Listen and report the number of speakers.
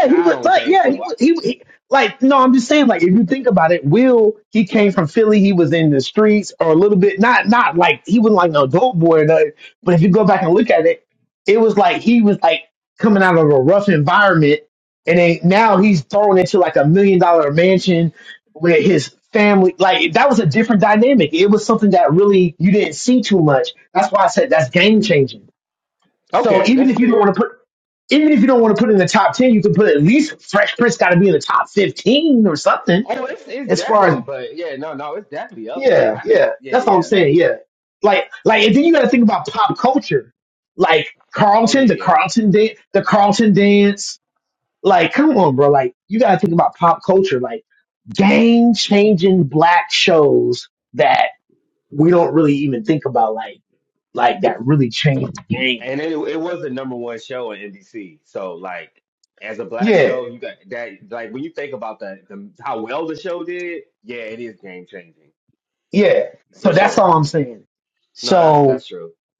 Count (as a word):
two